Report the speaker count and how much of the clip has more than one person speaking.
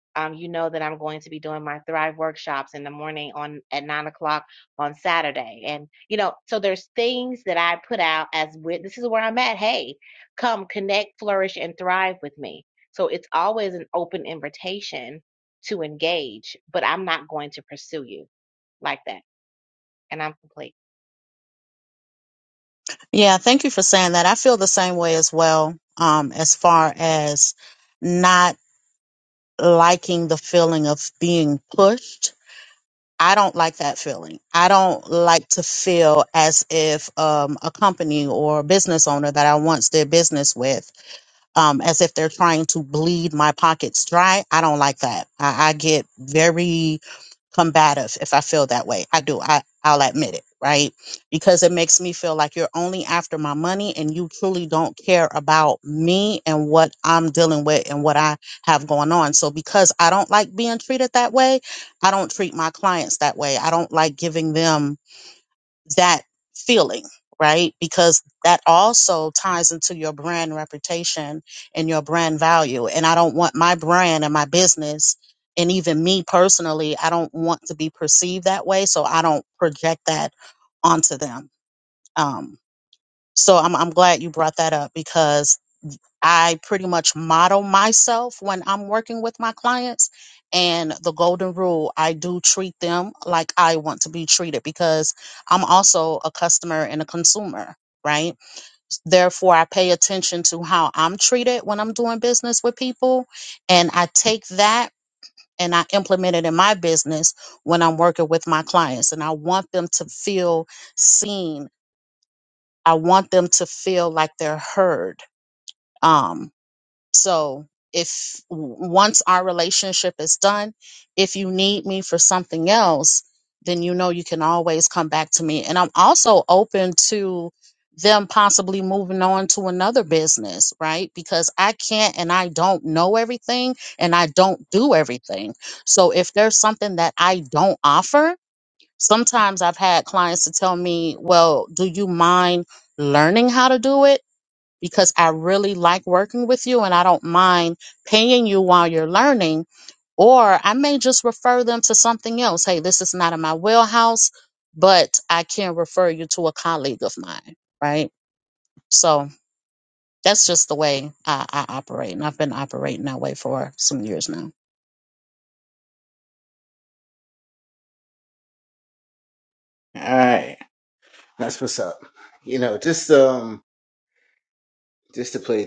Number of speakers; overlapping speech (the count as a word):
three, no overlap